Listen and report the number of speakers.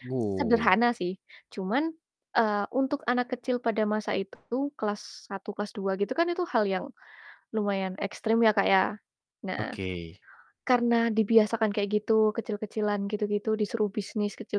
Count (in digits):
2